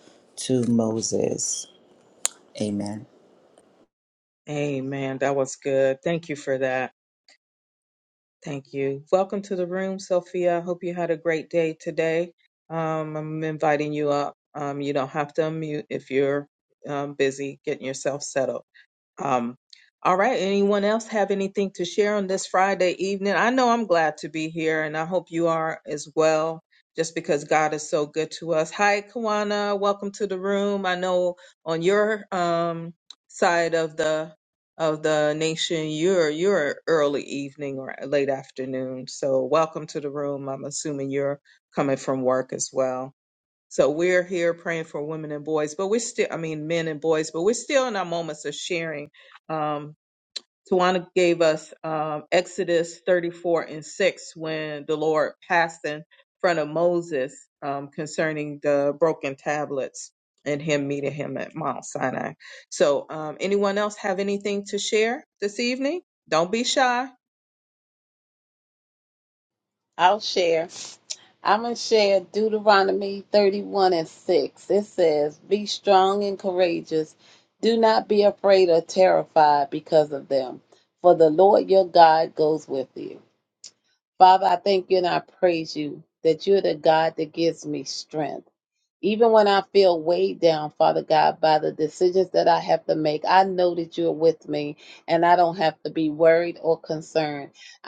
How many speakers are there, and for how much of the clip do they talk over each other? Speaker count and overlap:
three, no overlap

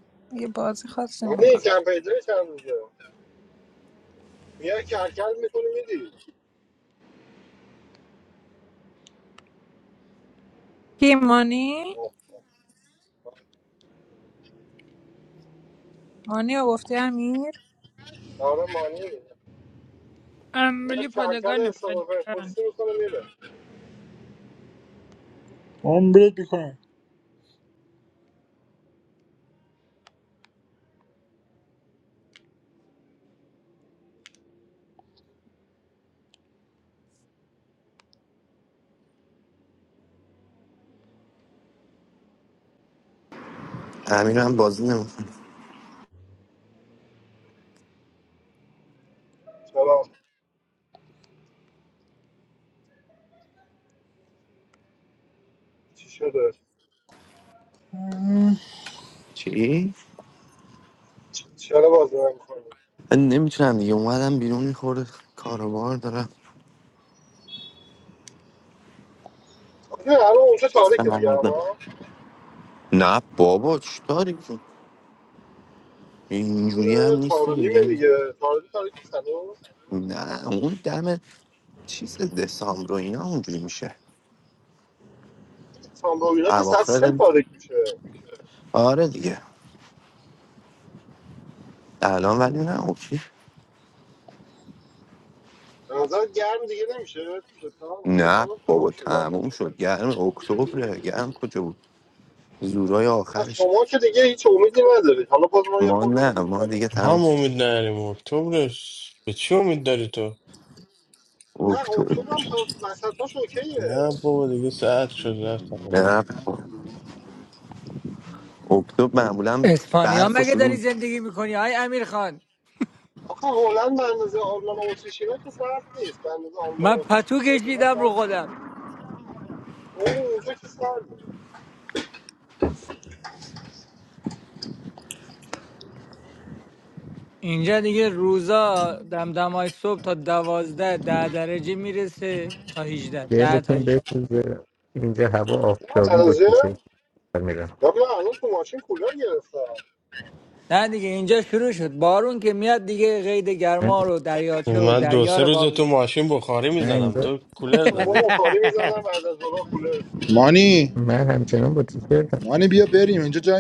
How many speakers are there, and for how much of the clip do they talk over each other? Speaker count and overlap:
seven, about 9%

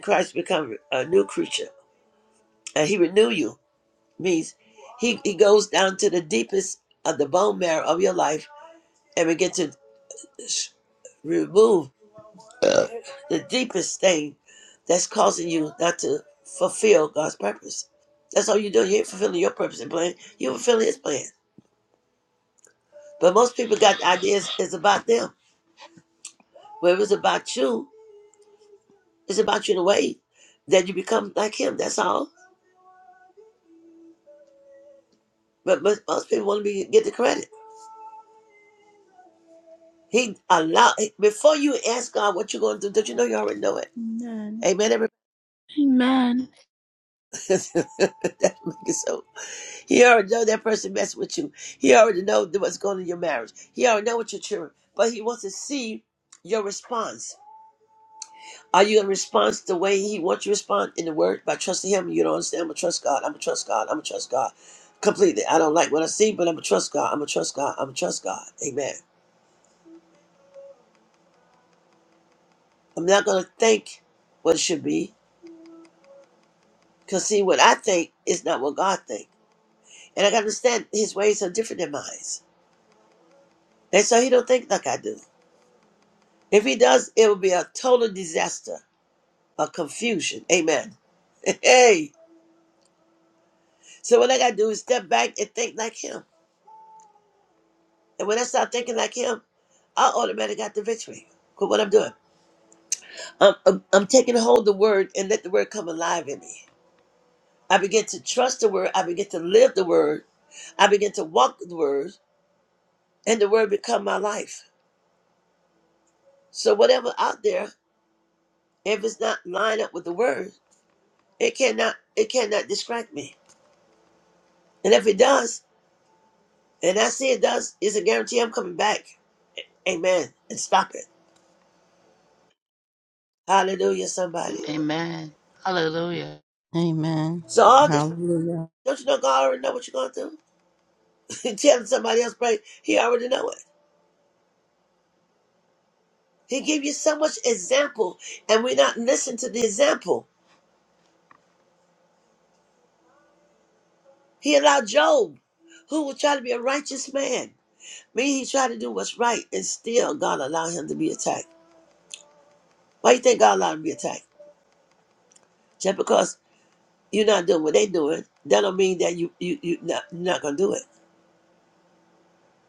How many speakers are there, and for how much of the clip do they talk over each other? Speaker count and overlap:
four, under 1%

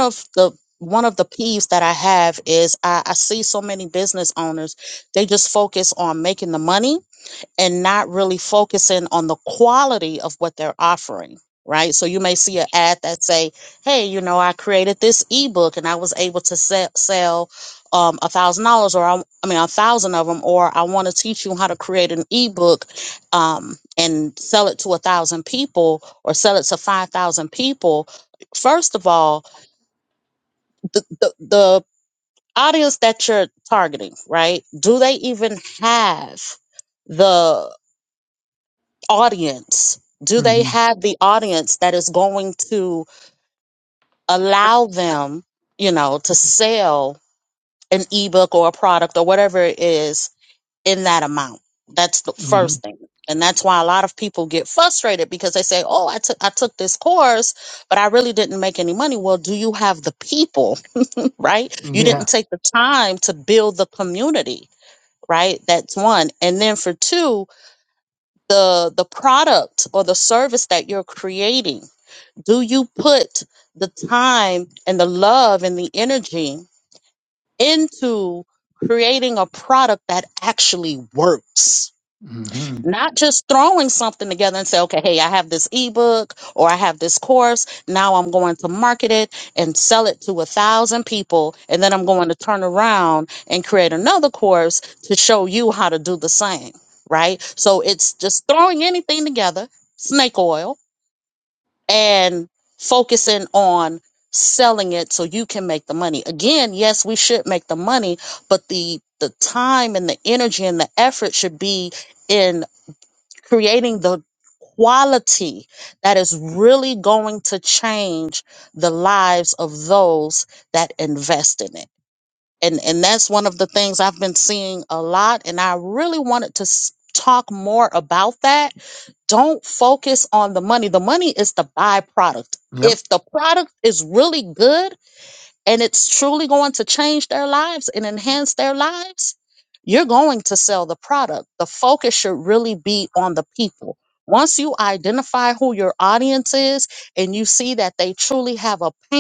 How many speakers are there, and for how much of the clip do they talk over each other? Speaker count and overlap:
two, about 1%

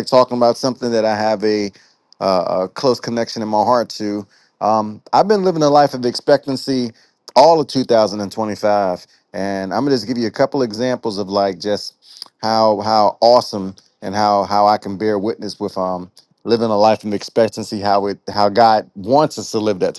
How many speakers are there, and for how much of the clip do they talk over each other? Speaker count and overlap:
one, no overlap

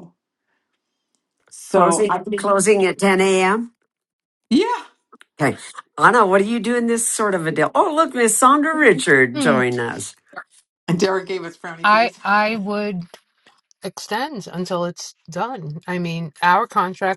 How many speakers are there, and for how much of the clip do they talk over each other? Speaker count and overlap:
three, about 7%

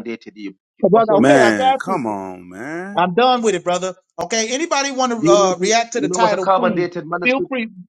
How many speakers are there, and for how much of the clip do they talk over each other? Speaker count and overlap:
three, about 38%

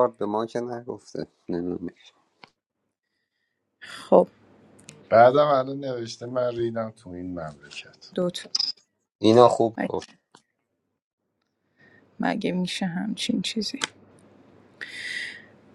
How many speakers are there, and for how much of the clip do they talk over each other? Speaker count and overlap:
three, about 1%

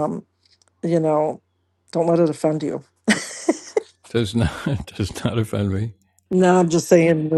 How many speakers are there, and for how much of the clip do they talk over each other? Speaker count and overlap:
two, no overlap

